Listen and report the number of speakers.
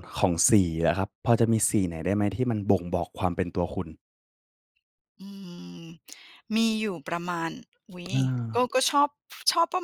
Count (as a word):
two